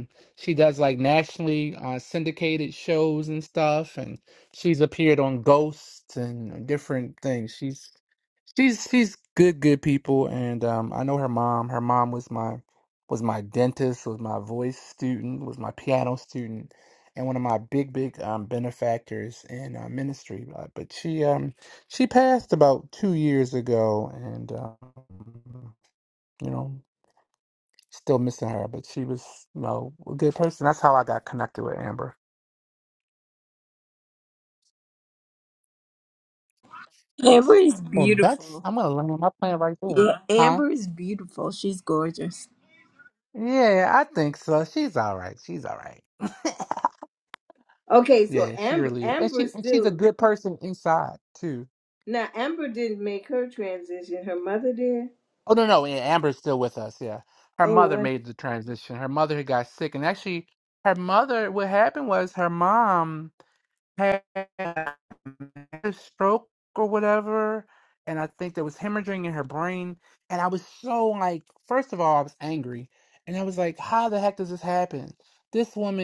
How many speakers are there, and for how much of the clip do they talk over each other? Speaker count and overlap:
3, about 4%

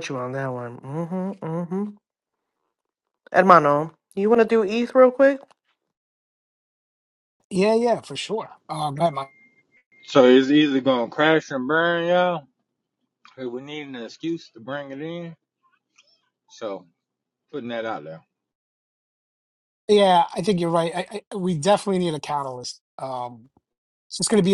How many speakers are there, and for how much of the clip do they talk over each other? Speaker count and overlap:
3, no overlap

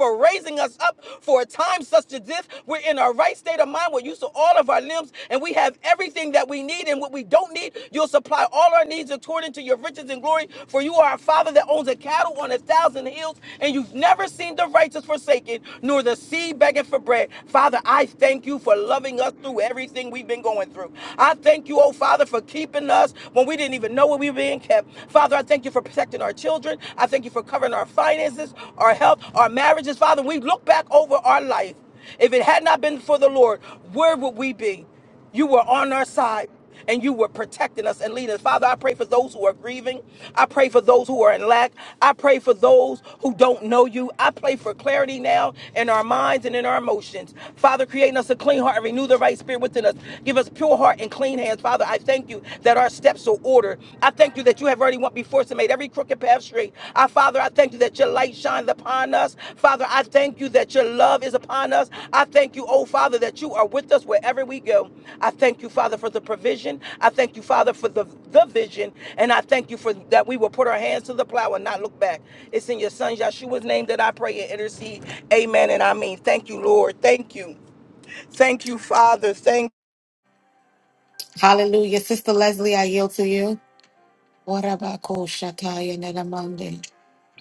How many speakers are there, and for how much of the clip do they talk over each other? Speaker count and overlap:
2, no overlap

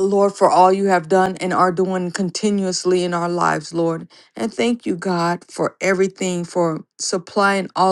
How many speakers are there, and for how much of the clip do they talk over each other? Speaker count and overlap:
1, no overlap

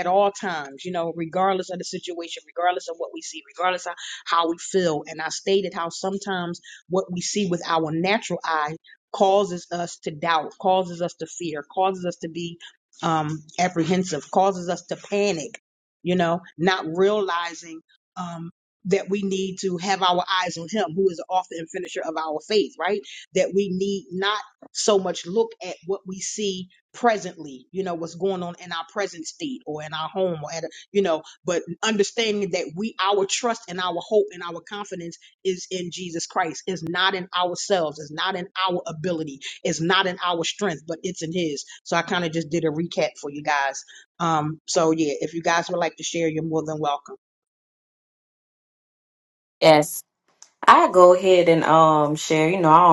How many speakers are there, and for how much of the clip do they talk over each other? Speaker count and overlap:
2, no overlap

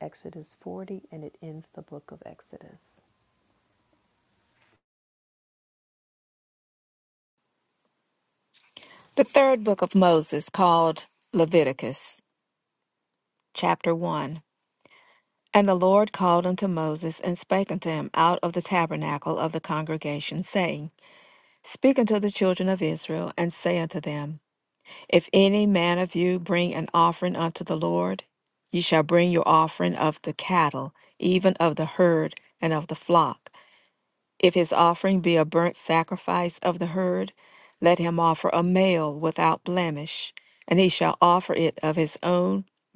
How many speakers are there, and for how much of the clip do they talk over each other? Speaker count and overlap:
2, no overlap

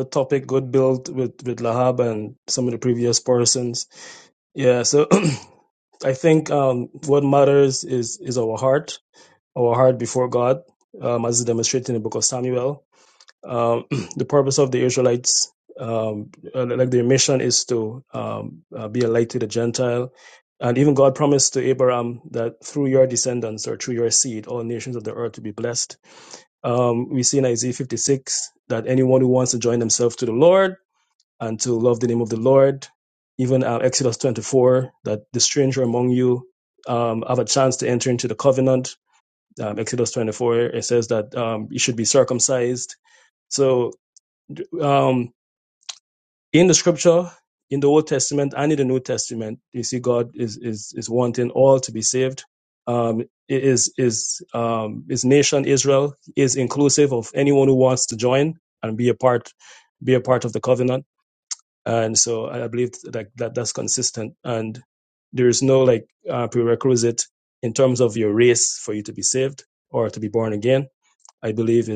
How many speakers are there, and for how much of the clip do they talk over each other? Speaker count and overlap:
1, no overlap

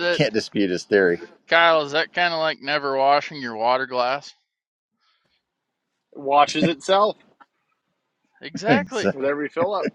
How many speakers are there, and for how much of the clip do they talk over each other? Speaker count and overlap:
3, about 1%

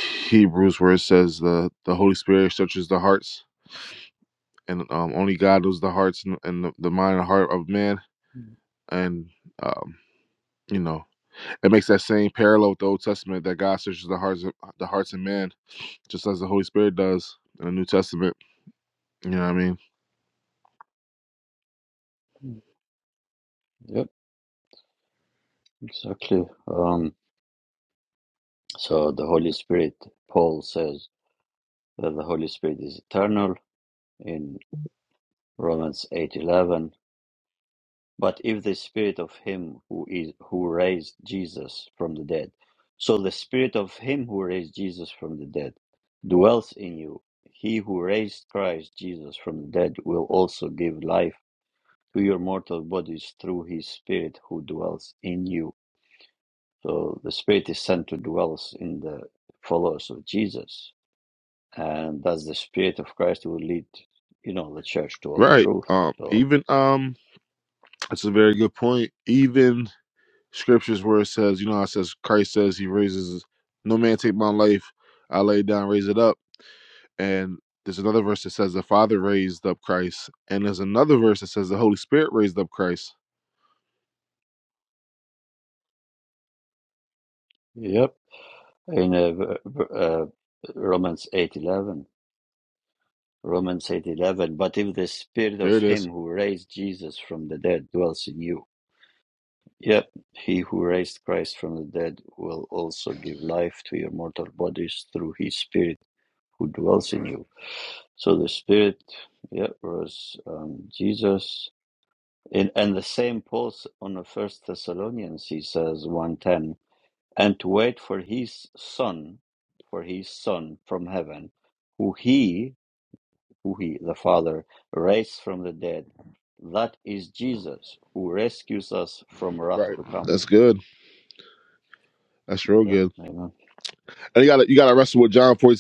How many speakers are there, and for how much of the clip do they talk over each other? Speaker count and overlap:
2, about 2%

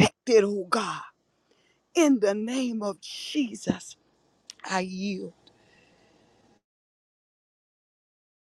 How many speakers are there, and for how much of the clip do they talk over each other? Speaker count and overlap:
1, no overlap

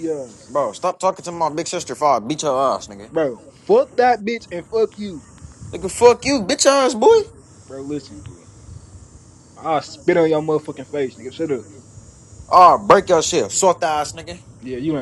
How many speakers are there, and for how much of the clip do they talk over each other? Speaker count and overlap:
2, no overlap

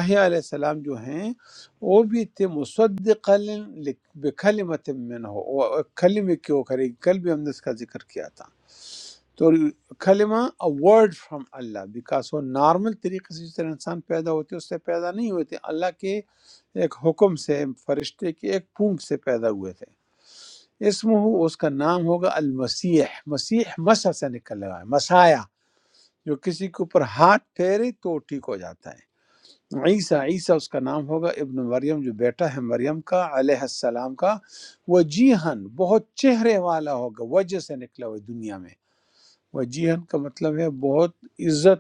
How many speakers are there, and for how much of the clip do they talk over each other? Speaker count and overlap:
1, no overlap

